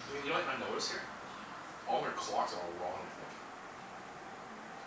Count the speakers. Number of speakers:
one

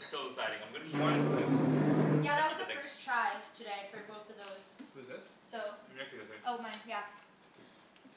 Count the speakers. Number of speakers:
three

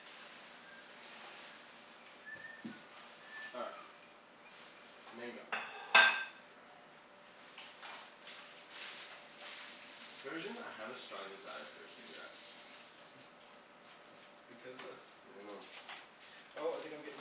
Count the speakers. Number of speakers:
two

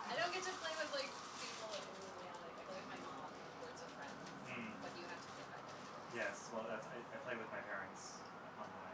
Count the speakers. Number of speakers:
two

